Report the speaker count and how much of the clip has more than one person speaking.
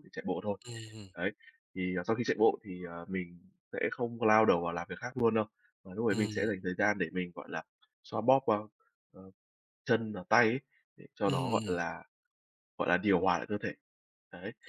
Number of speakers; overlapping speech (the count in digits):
2, about 6%